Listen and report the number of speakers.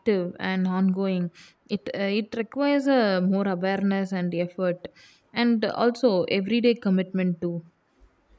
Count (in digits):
1